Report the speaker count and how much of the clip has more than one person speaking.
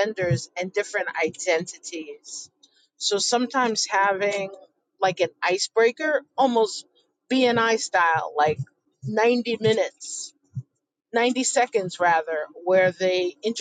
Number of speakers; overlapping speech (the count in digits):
1, no overlap